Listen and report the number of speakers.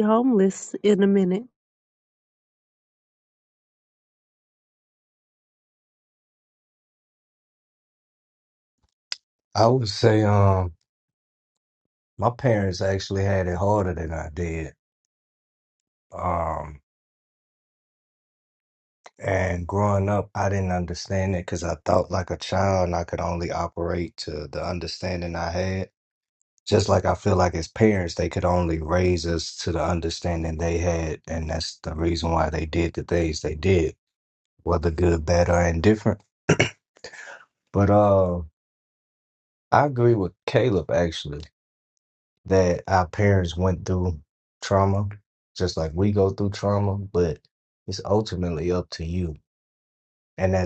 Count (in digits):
2